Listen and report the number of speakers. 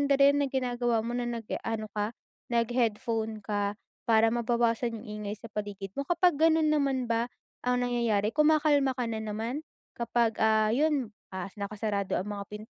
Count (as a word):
one